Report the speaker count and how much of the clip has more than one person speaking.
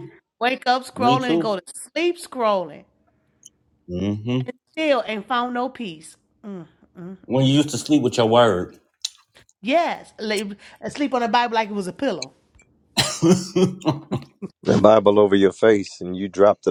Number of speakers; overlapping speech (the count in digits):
3, about 5%